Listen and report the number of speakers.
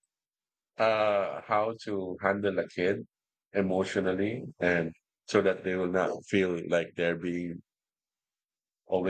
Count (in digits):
1